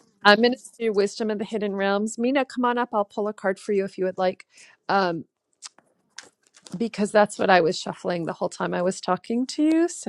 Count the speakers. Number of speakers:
one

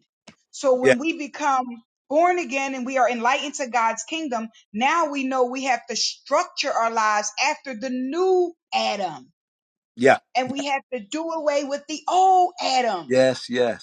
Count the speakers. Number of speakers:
two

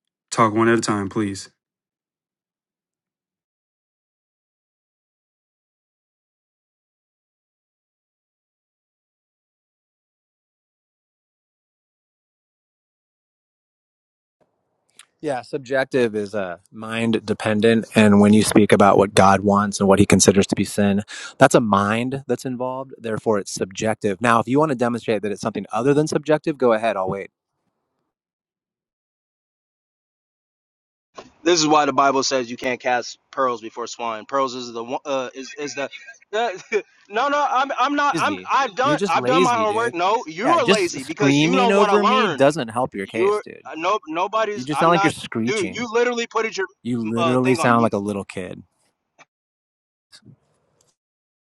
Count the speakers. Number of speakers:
three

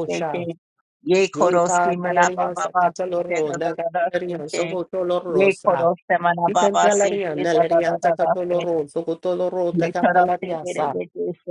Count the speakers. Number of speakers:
two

